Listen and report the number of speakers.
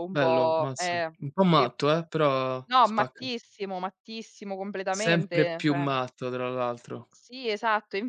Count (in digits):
2